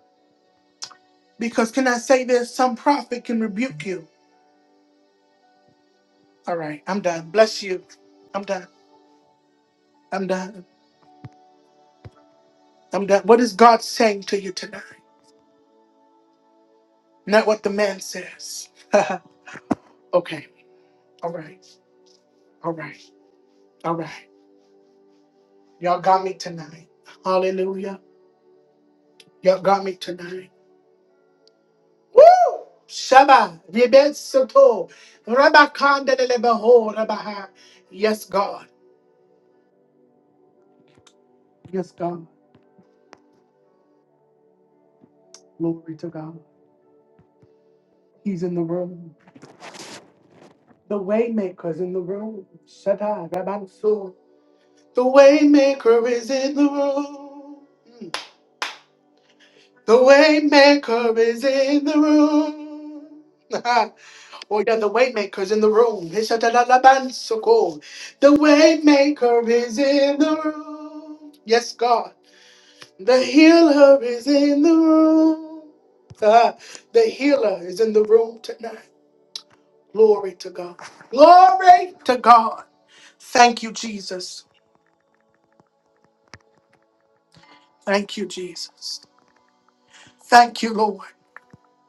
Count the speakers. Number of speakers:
1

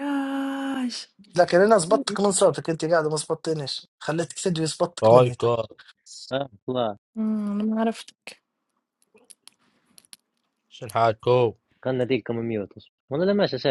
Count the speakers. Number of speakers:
4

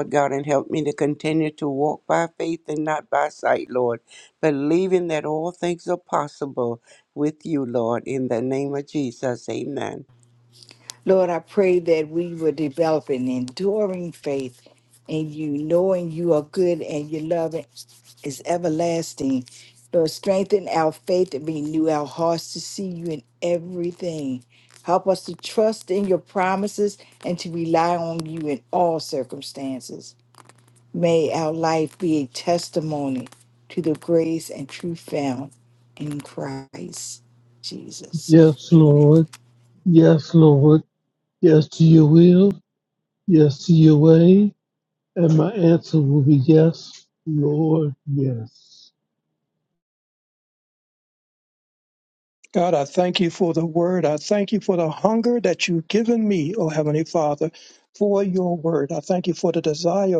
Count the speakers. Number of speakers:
4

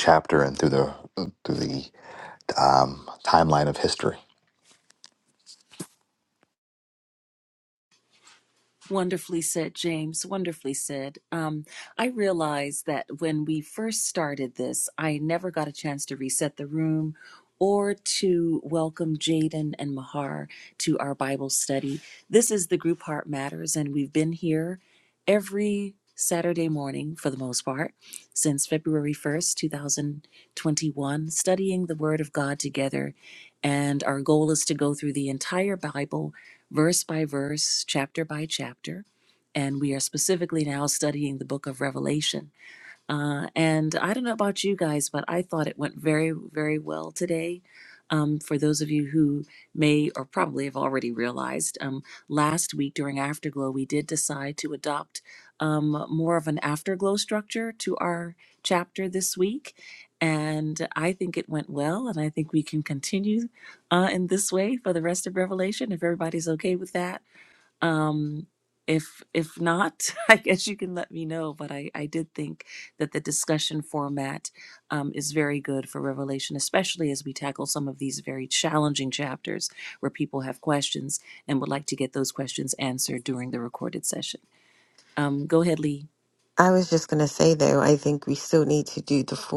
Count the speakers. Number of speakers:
3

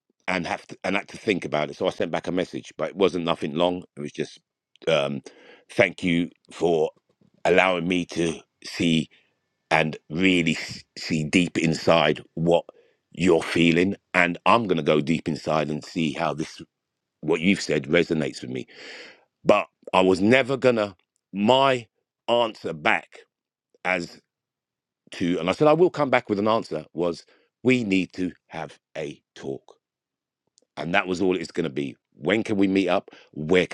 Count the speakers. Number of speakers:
1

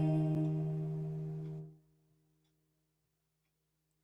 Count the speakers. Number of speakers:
0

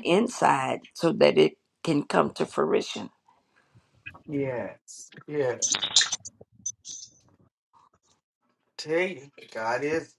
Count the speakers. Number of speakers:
2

